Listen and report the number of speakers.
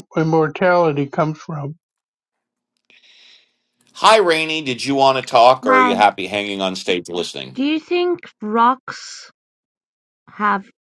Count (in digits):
3